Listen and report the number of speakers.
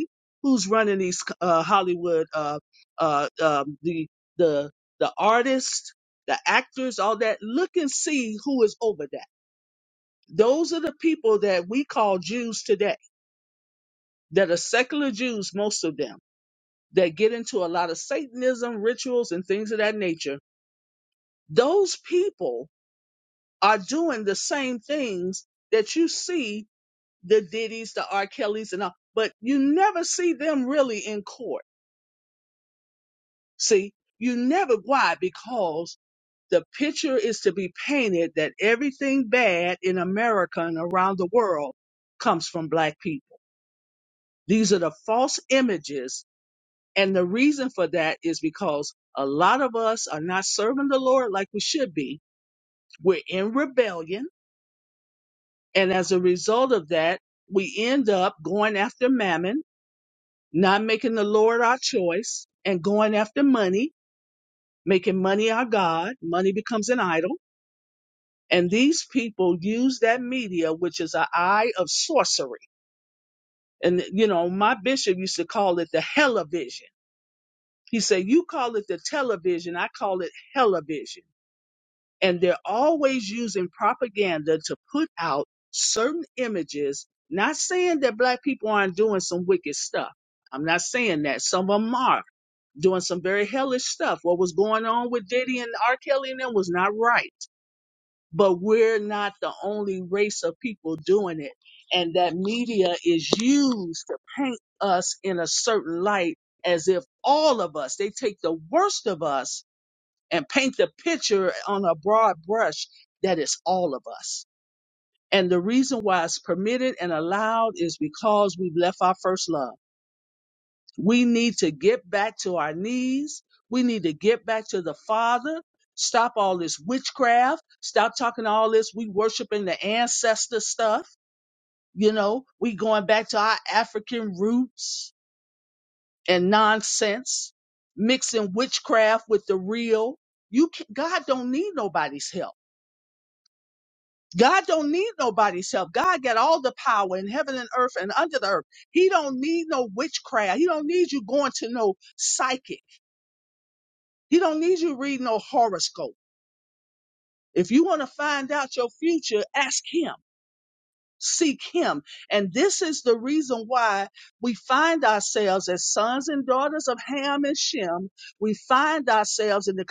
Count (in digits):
1